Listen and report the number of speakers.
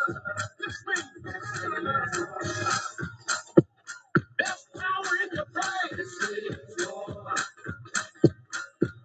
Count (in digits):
0